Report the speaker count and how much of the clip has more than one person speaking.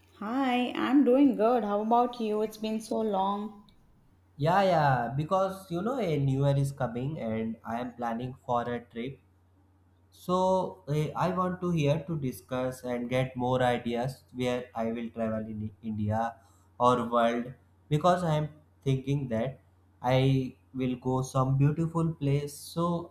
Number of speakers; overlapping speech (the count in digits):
2, no overlap